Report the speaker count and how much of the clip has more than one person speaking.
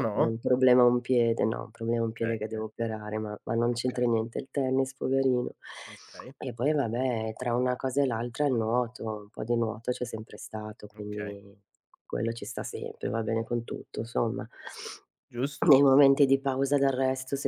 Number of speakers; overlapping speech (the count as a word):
two, about 8%